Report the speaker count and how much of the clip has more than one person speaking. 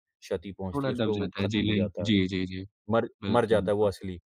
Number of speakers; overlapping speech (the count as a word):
two, about 48%